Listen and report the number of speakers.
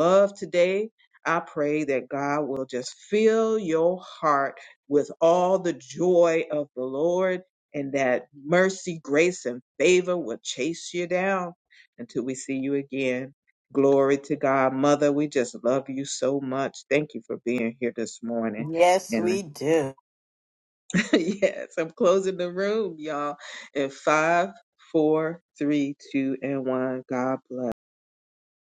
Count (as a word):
two